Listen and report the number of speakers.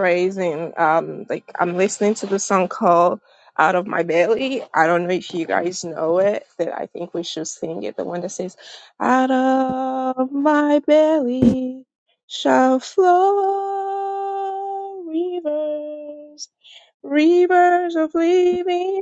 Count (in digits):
1